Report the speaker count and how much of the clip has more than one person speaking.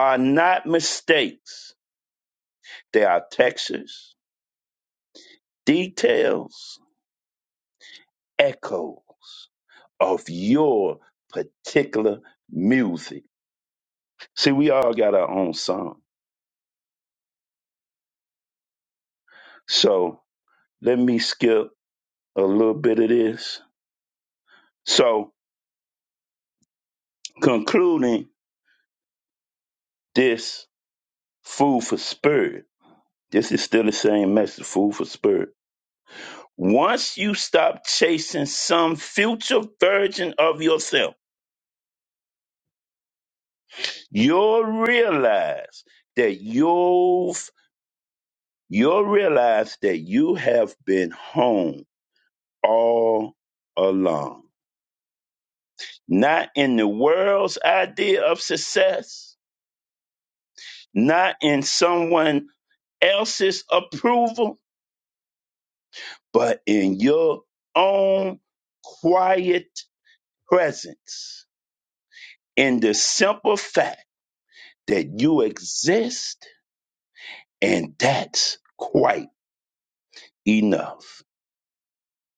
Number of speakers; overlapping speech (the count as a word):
one, no overlap